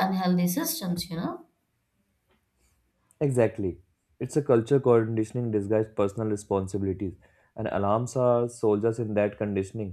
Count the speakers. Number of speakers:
2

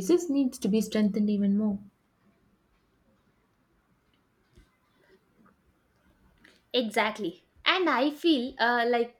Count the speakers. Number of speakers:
2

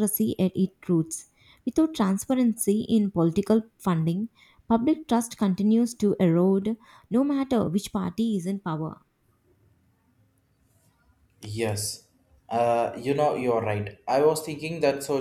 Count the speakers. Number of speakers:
2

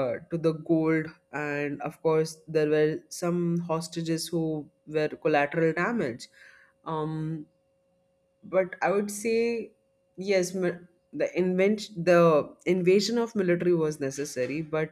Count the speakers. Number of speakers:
1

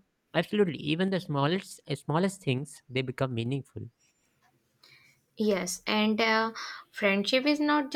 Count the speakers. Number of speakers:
2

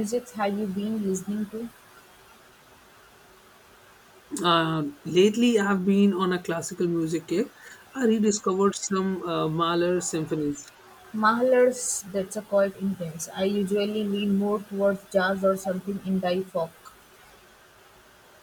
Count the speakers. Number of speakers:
2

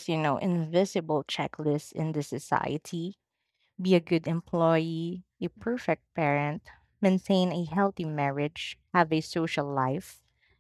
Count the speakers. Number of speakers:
1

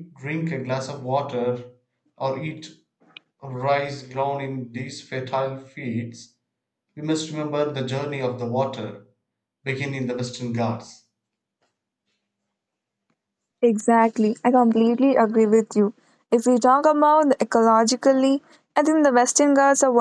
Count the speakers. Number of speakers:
2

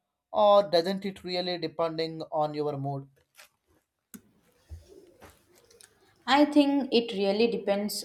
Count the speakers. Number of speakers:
2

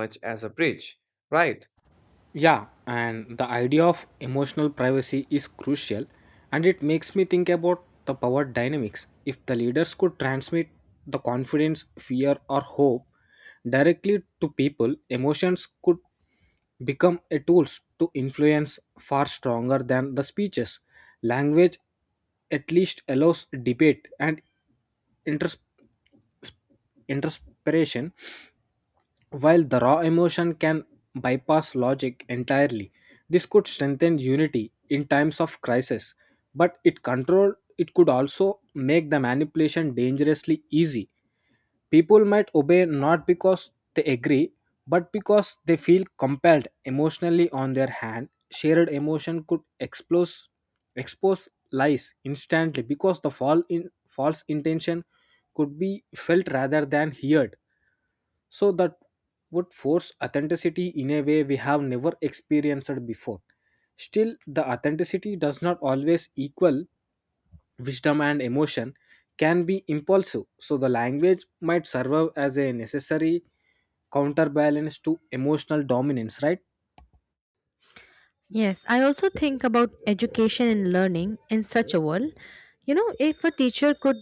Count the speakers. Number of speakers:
3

